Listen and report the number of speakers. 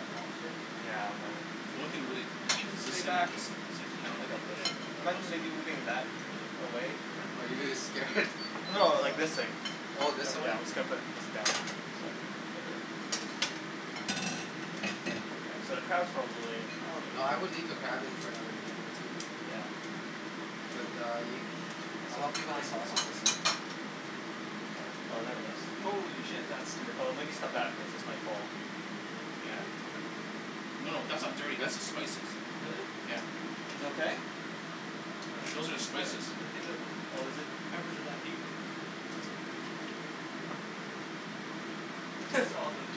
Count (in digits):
4